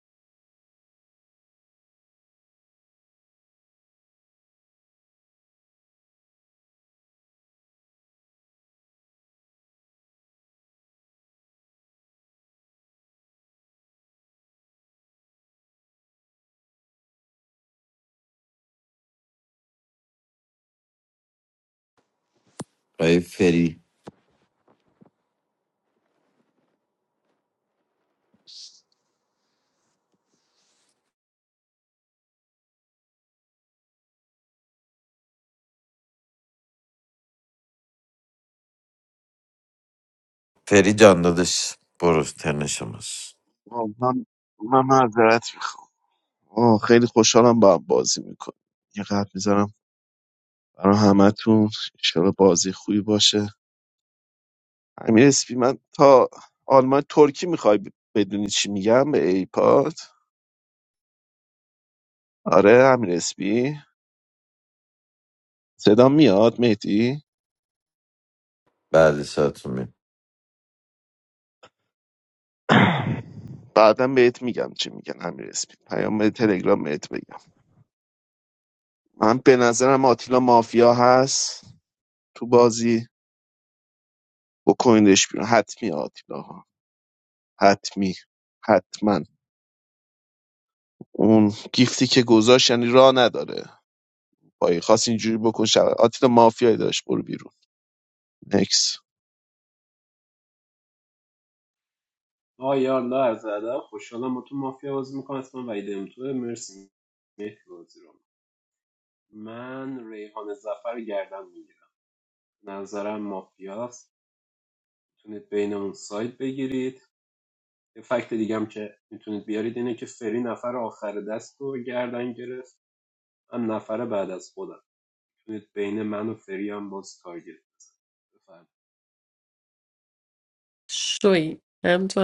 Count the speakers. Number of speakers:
four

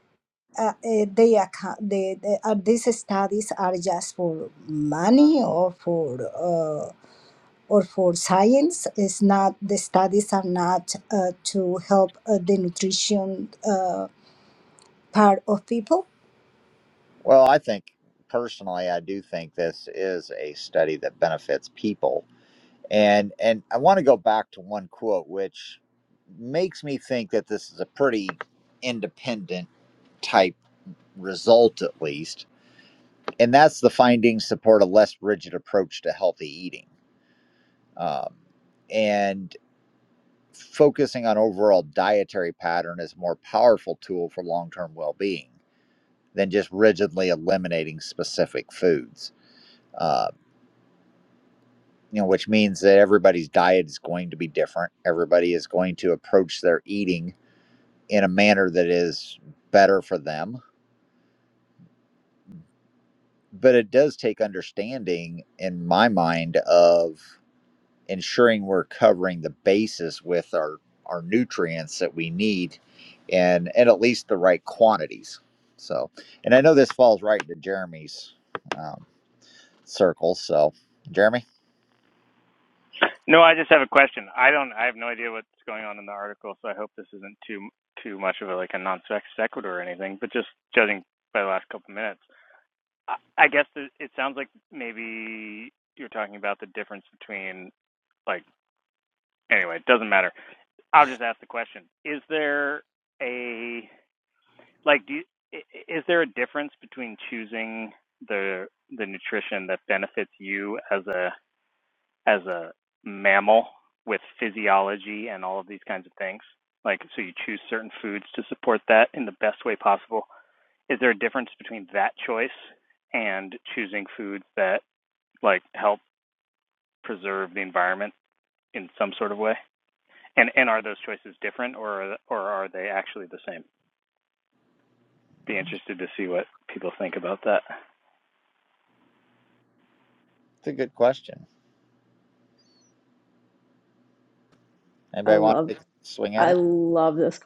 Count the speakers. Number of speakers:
four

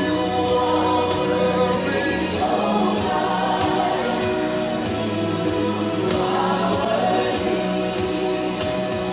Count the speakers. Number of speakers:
zero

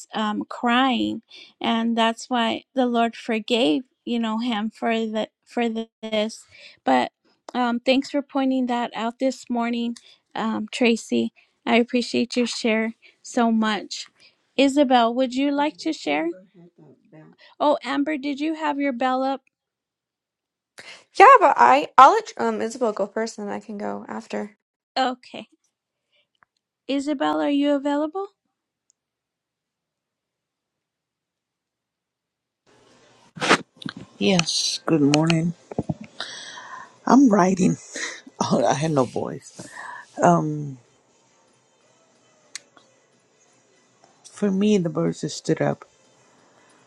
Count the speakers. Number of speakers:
three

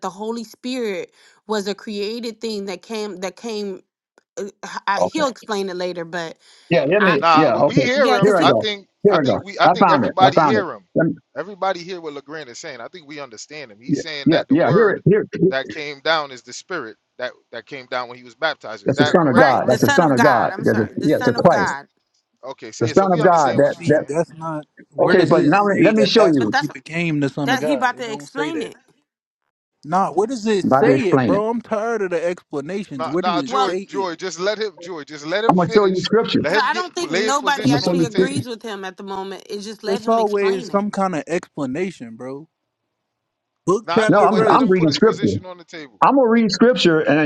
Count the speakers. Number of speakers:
four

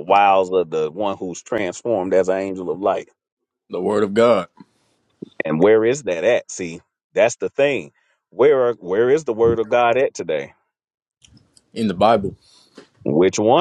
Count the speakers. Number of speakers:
two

